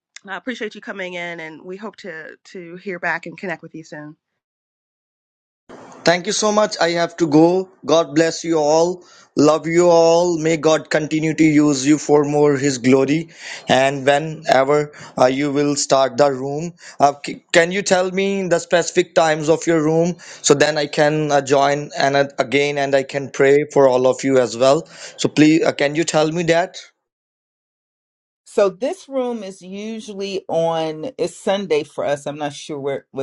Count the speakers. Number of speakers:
3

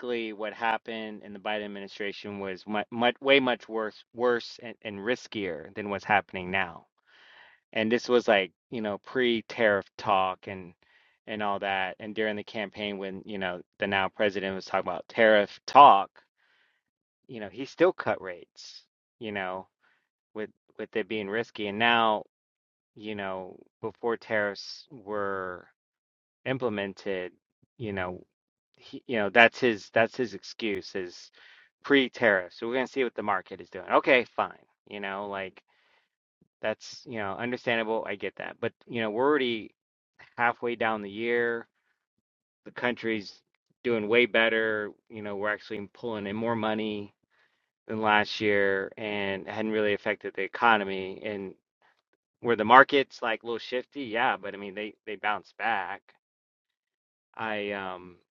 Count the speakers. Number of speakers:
1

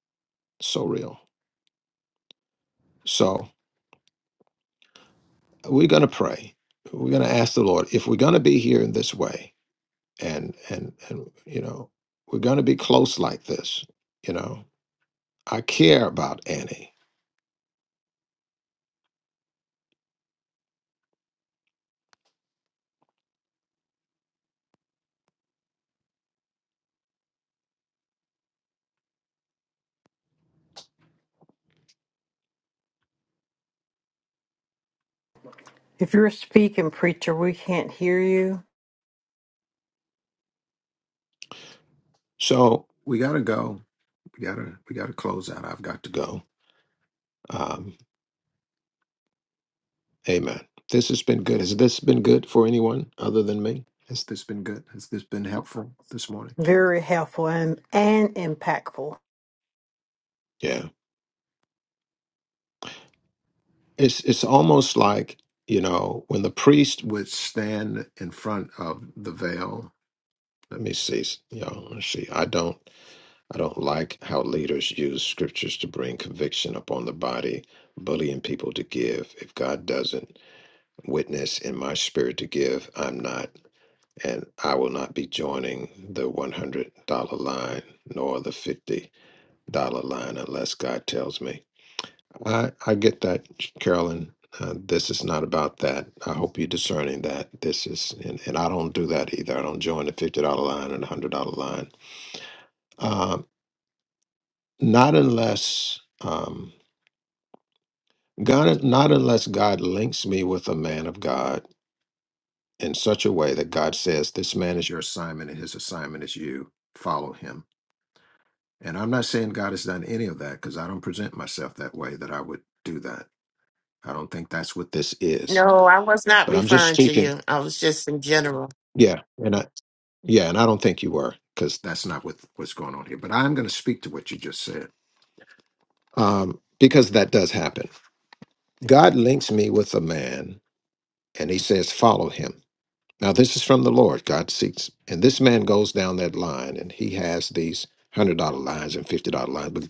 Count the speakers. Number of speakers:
3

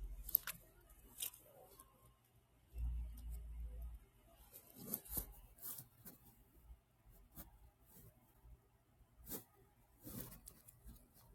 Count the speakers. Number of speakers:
0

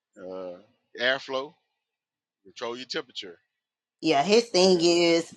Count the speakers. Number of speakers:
2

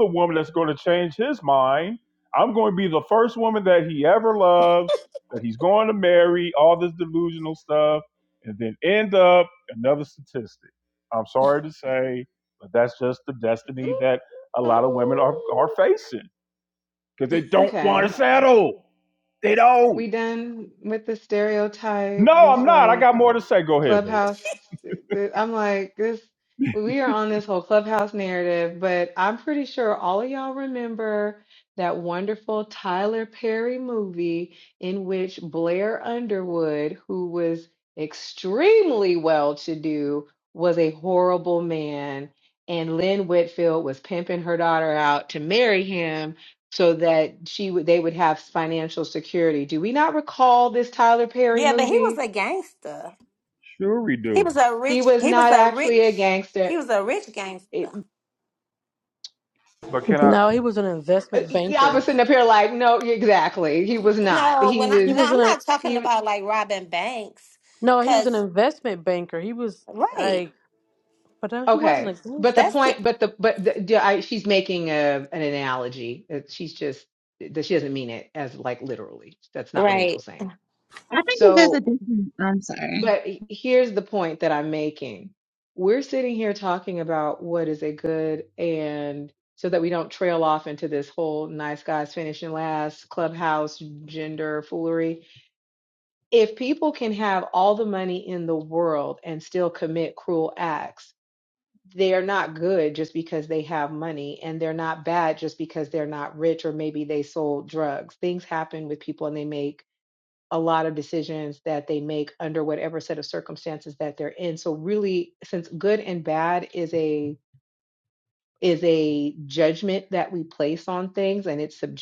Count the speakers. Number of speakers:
5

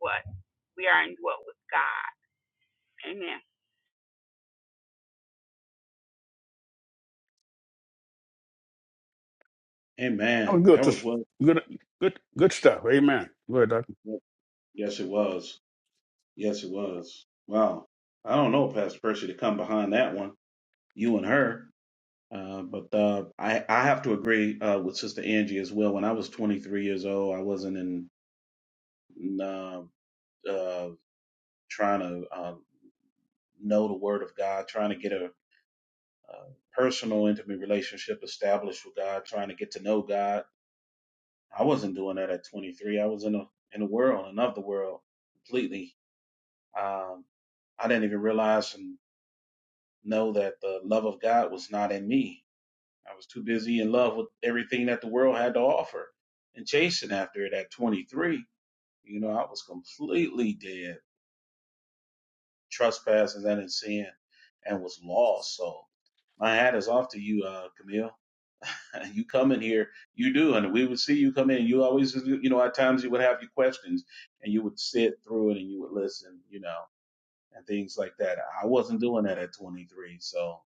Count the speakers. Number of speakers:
3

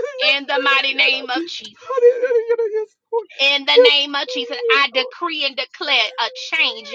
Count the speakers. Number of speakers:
2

